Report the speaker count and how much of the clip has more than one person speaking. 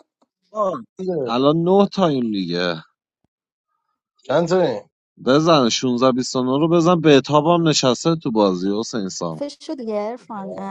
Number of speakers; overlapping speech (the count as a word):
three, about 4%